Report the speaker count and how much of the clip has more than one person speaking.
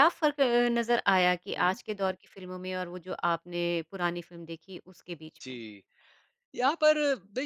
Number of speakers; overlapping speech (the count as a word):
two, about 4%